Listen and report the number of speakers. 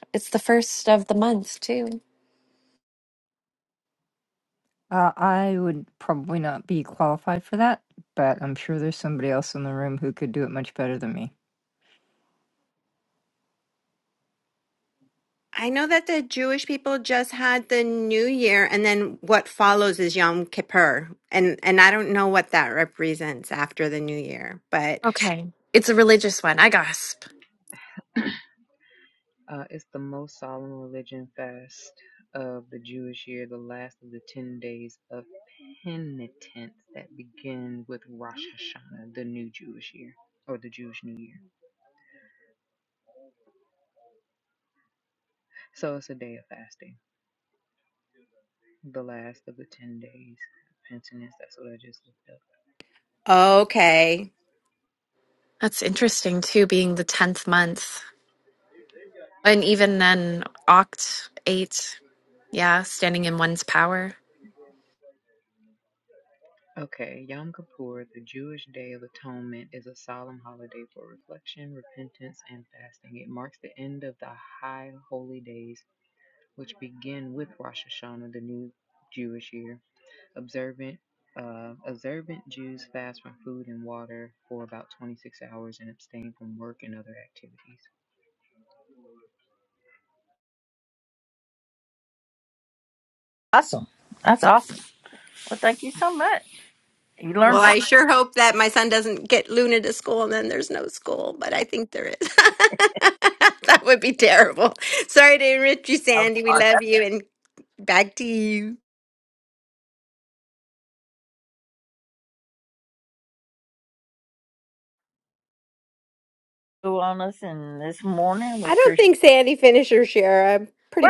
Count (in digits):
5